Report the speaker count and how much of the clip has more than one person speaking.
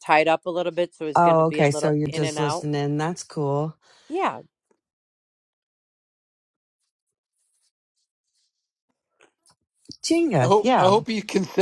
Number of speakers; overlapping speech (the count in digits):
3, about 17%